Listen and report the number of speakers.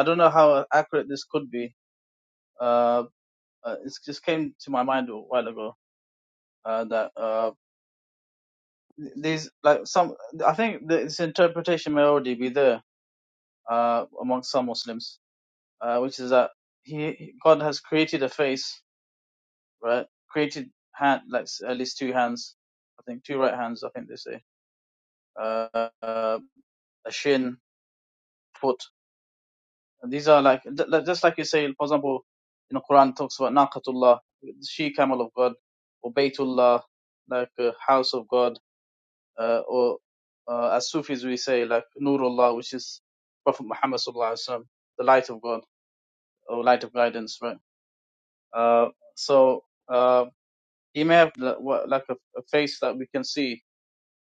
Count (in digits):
1